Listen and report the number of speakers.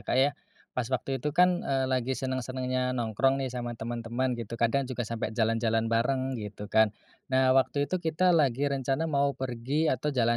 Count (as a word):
one